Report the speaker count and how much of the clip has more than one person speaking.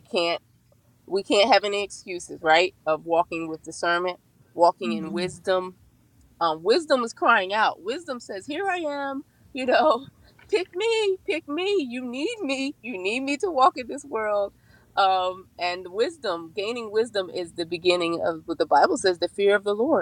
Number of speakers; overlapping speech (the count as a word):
one, no overlap